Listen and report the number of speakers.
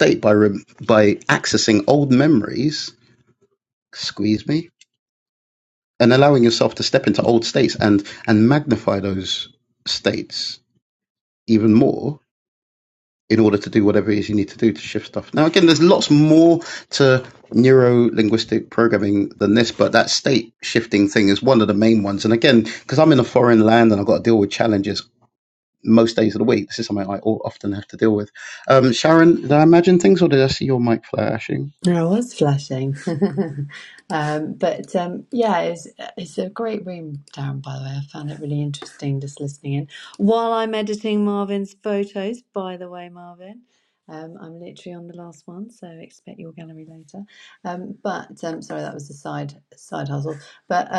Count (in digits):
2